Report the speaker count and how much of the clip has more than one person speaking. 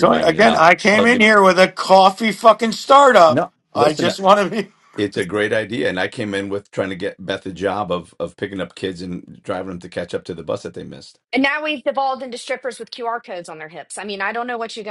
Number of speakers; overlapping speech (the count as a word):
three, about 12%